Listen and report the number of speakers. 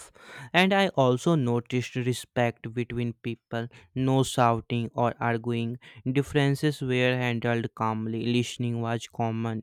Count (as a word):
one